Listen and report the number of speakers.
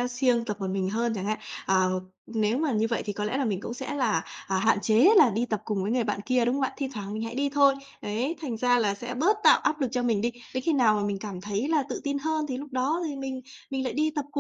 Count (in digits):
1